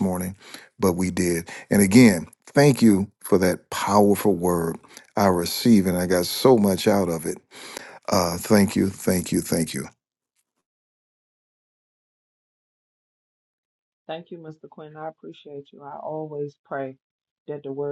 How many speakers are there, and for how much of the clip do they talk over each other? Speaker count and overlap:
two, no overlap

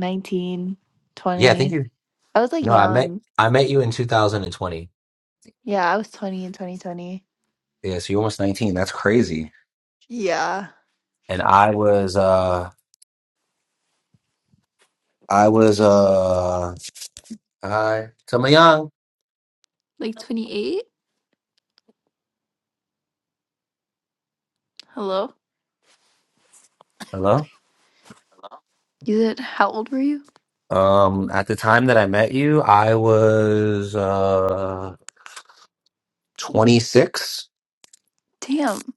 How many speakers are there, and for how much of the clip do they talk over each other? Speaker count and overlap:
two, about 2%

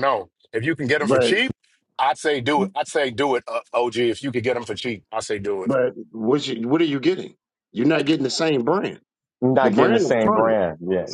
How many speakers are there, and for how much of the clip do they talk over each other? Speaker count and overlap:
three, about 12%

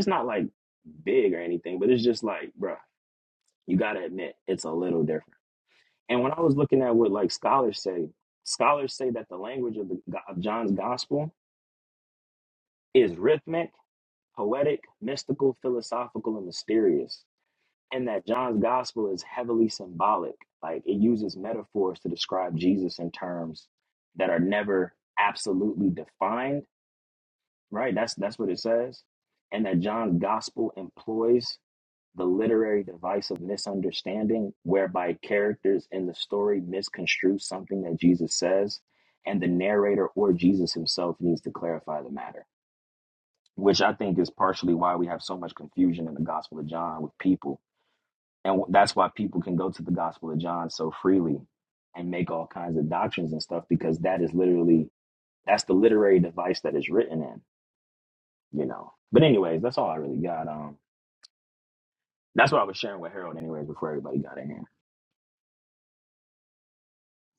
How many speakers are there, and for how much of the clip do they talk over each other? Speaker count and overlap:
one, no overlap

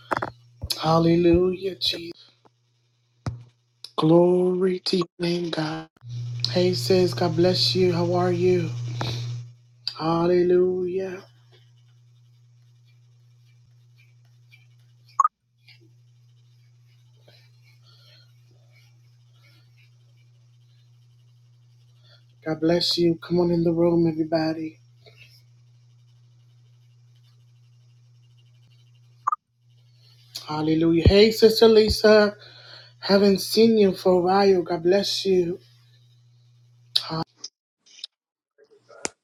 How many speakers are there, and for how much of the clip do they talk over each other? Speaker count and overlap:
one, no overlap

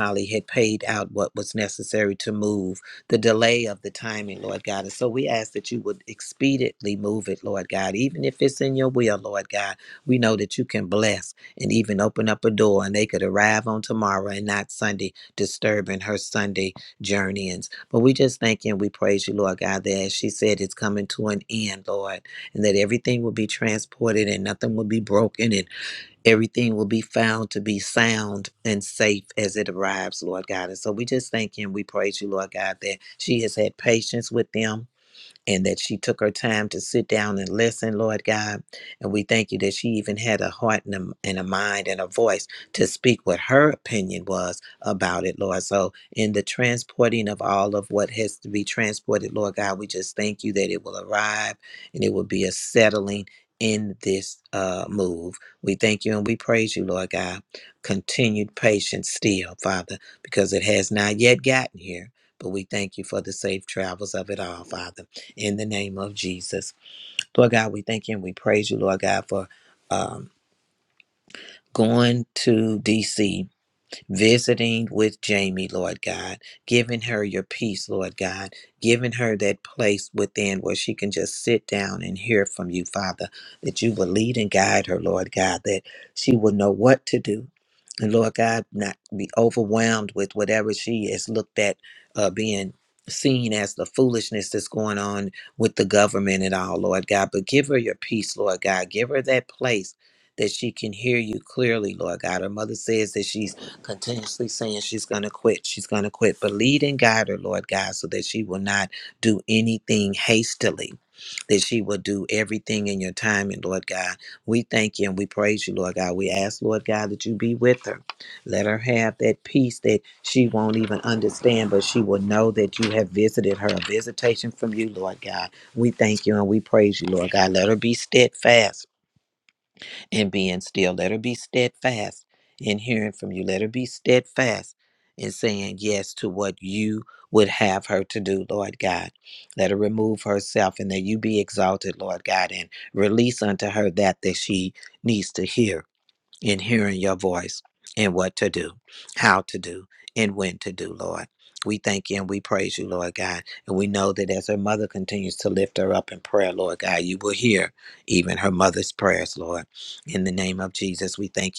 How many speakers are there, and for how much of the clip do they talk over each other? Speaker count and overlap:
one, no overlap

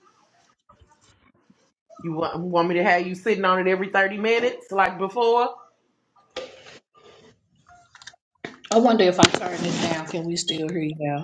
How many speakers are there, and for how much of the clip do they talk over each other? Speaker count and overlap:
two, no overlap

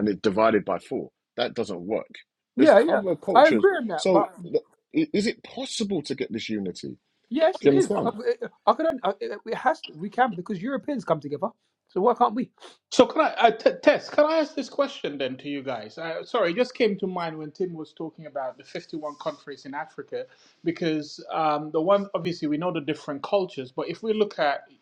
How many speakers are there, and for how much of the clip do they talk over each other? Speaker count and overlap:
three, about 6%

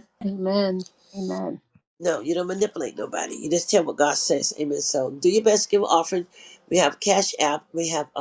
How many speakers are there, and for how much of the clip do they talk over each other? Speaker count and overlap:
two, no overlap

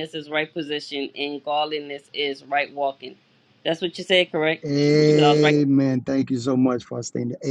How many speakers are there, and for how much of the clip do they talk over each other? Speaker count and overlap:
two, about 5%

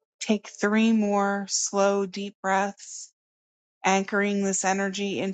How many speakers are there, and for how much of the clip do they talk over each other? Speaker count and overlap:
one, no overlap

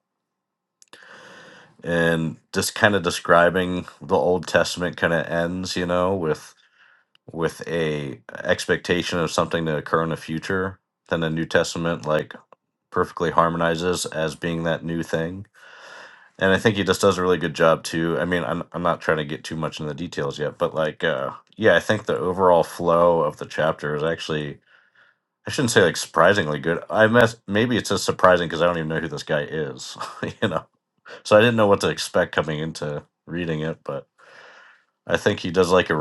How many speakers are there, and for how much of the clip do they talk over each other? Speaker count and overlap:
one, no overlap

